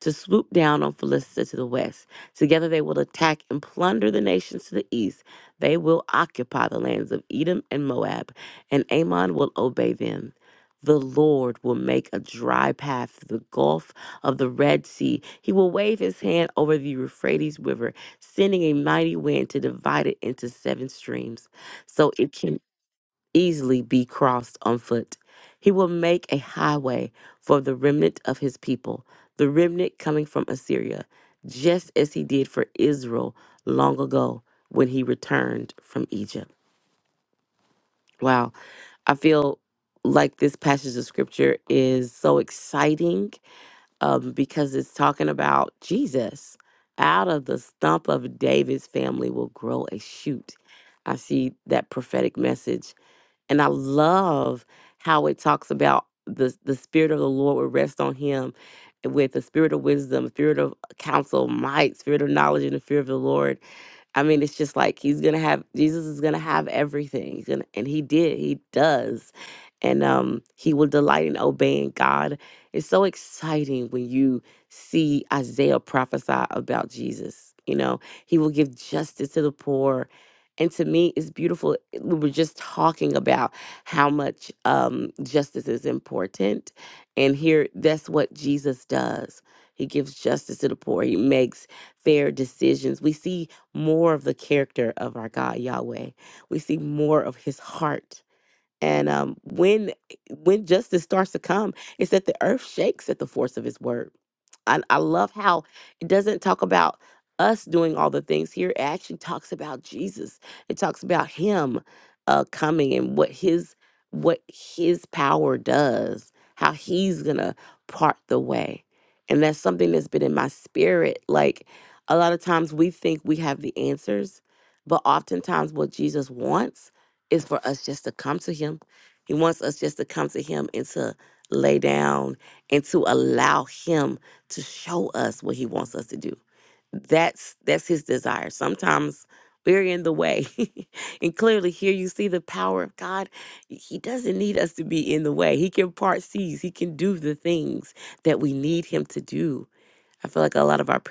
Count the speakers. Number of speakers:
1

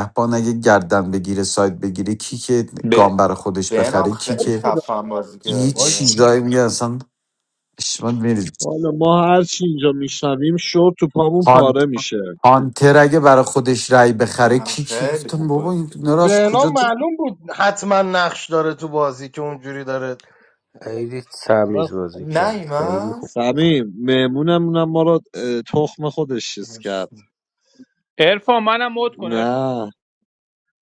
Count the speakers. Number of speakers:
6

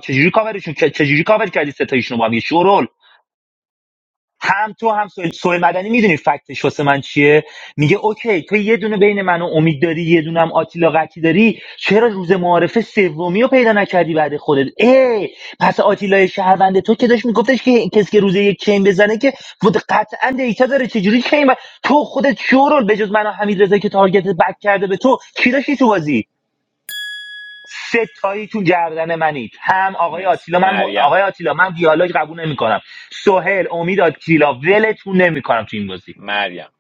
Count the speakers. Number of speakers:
2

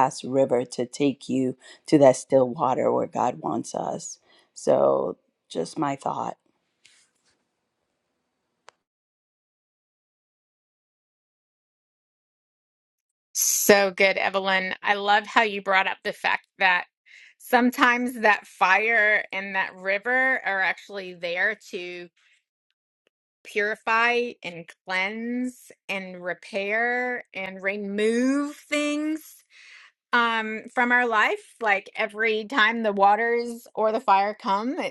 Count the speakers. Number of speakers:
2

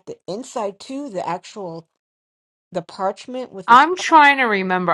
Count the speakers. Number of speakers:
2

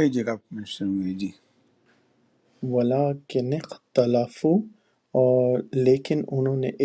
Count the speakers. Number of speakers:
2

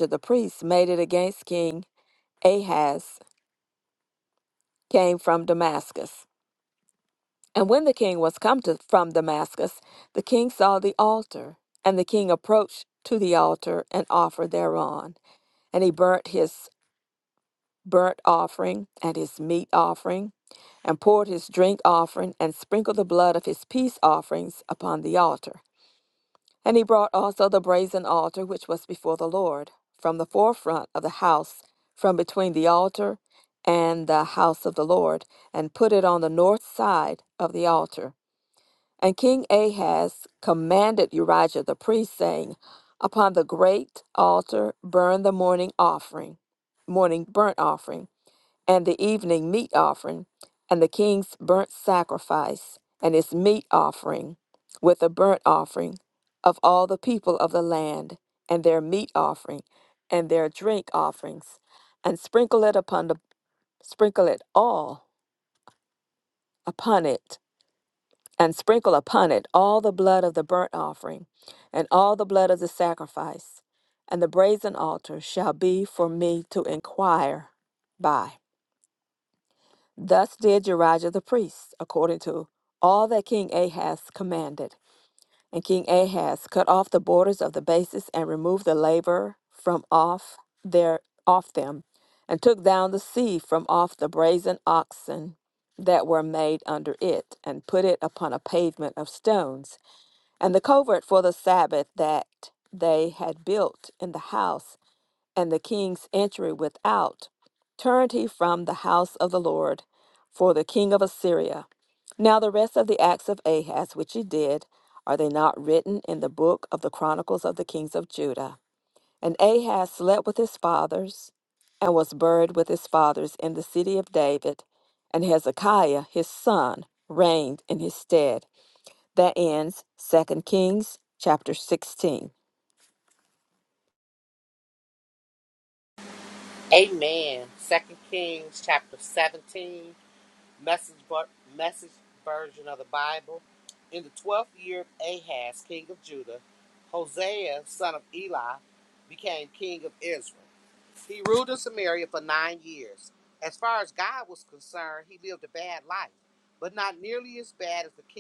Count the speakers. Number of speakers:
2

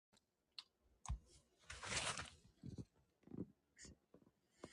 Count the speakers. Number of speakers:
0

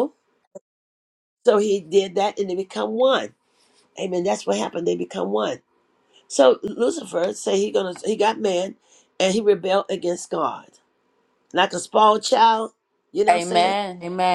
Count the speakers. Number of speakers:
2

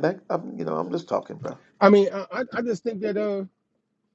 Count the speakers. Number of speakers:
2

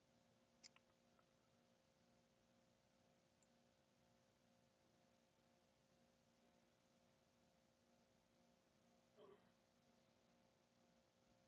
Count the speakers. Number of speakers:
0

